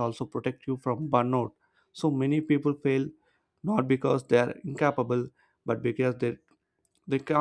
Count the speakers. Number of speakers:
1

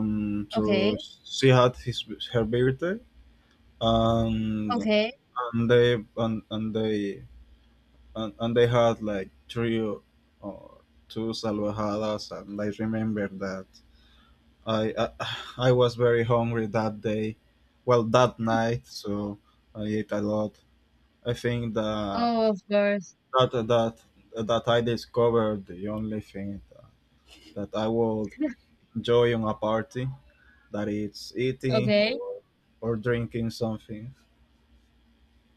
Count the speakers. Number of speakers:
2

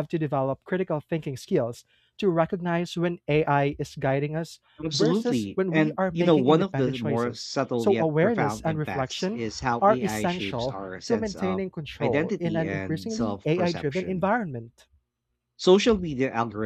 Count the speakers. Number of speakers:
2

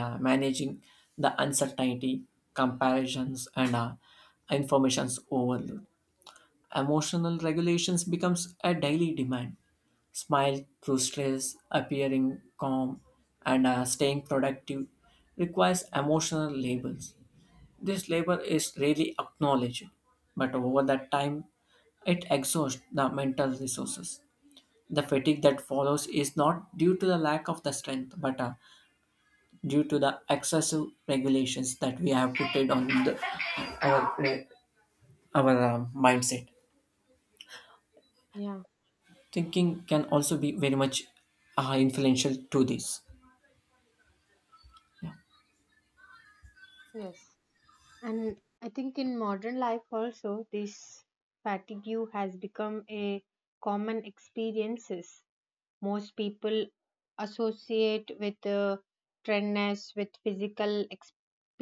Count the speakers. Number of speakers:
2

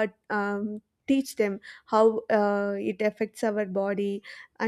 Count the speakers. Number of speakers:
1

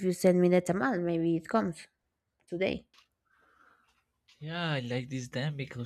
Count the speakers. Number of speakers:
2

